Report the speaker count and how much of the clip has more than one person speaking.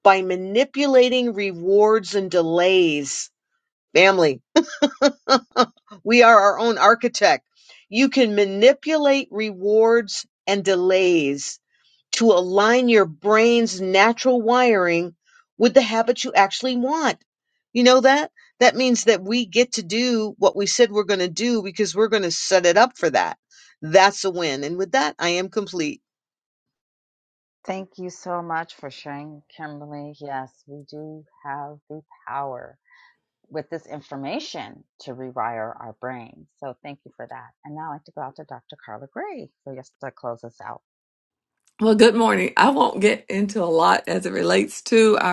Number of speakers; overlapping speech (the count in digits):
3, no overlap